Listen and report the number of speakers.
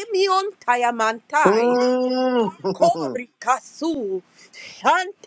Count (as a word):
two